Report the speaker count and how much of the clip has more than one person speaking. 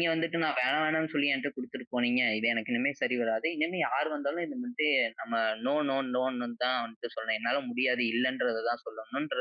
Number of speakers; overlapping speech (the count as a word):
one, no overlap